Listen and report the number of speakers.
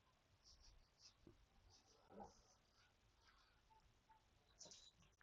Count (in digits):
0